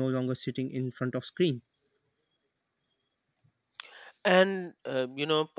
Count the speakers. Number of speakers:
2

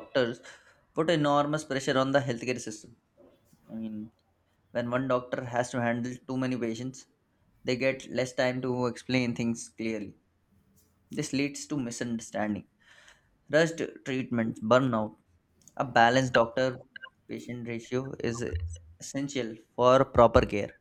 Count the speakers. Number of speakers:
1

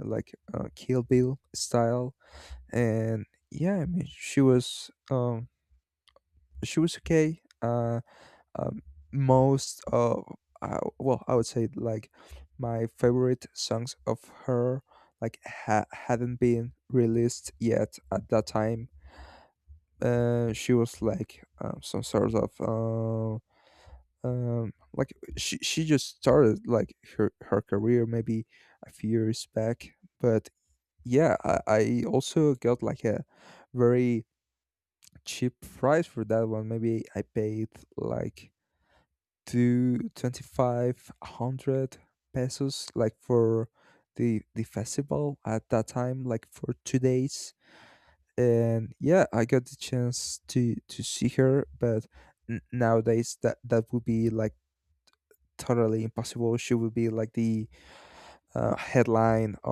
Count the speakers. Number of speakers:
1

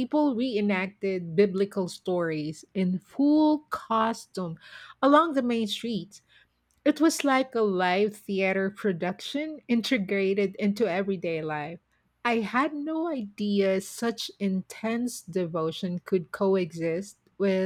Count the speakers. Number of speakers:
1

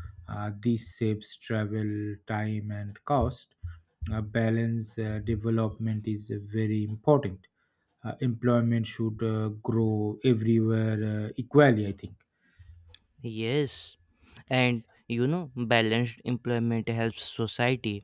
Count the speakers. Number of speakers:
2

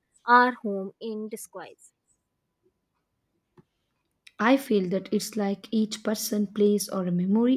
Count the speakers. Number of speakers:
2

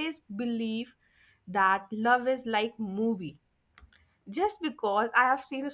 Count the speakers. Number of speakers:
1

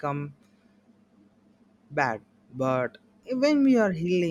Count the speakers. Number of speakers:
1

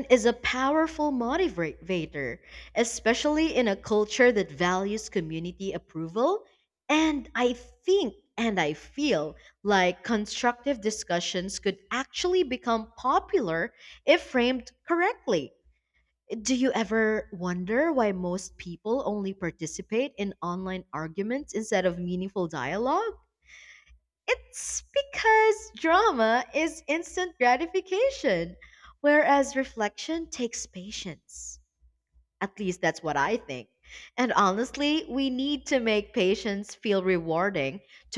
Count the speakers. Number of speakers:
1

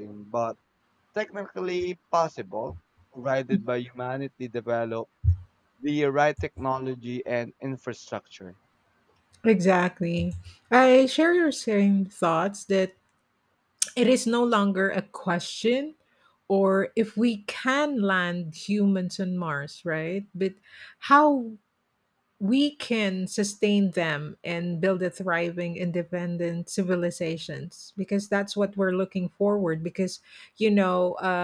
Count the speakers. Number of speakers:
2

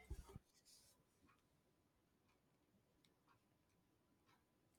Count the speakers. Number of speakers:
0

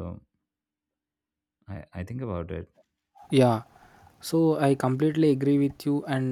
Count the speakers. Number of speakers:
2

